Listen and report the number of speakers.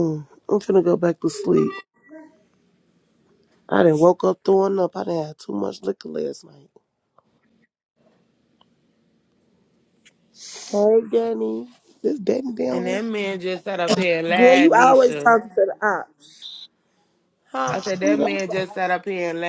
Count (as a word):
three